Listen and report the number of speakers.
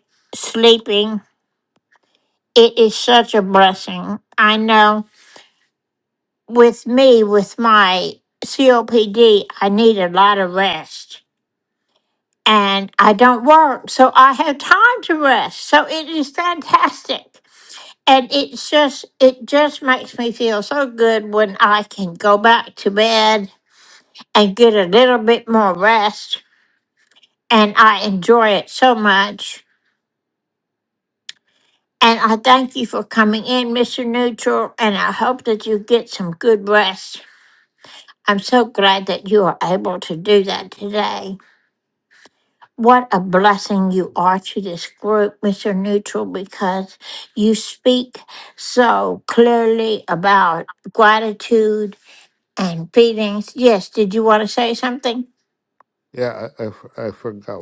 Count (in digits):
2